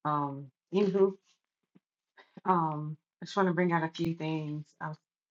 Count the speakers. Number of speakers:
1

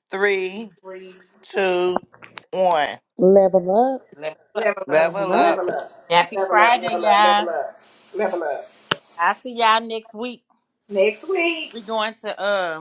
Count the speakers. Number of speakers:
4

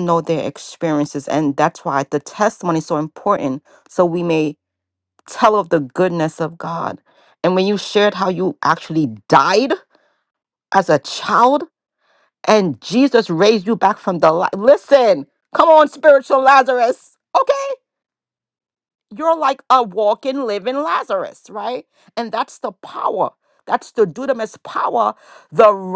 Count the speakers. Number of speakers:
1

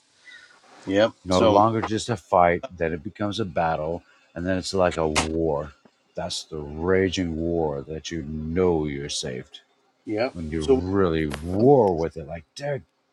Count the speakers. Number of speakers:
2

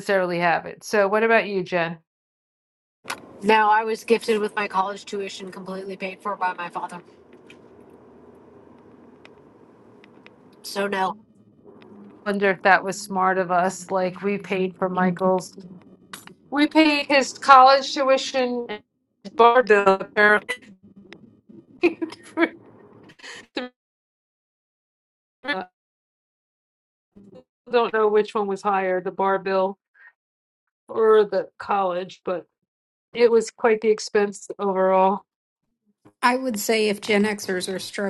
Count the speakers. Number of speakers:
3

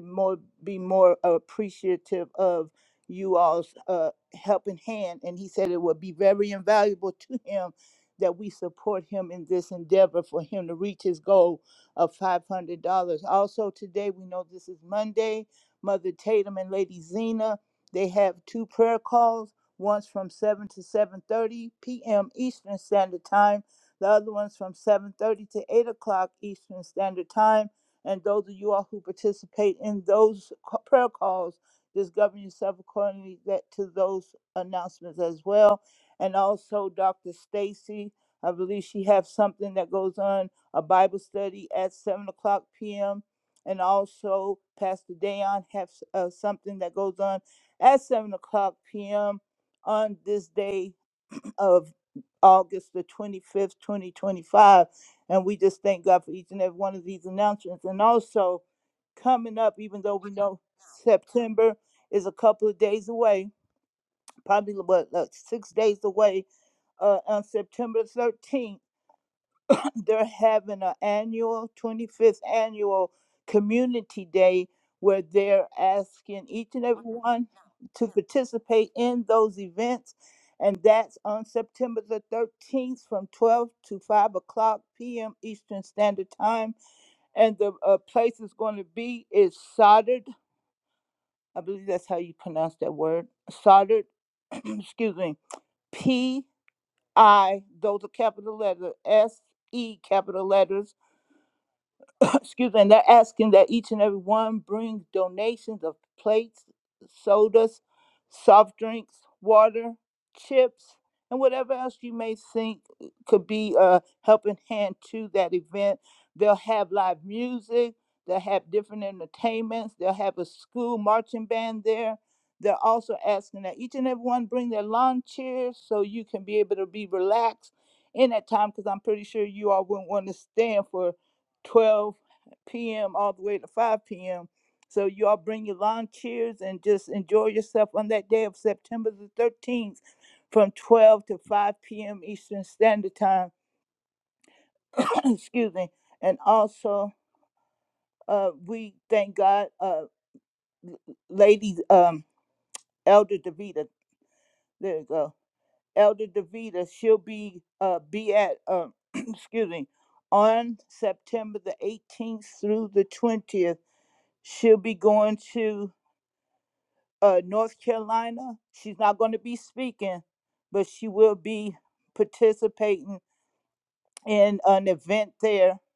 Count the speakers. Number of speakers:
1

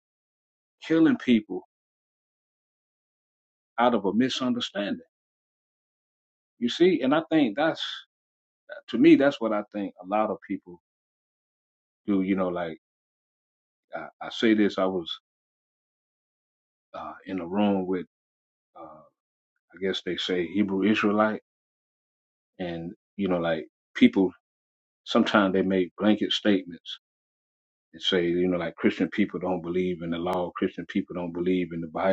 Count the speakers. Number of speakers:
1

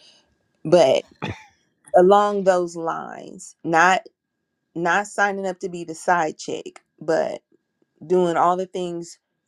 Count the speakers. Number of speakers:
1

